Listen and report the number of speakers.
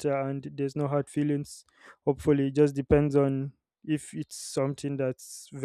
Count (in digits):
1